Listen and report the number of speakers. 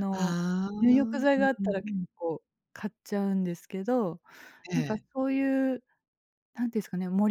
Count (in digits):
2